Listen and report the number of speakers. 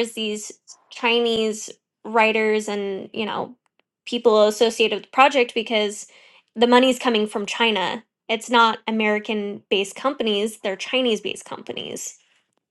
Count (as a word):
one